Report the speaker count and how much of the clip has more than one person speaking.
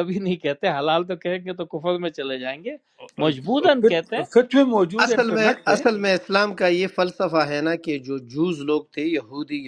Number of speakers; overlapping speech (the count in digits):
3, about 17%